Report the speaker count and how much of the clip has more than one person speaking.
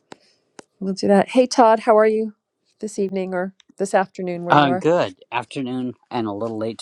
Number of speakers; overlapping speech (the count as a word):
two, about 4%